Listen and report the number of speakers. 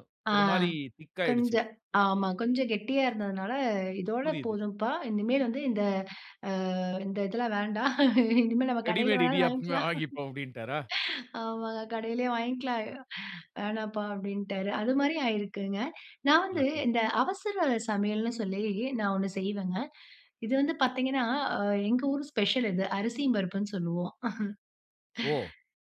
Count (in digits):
2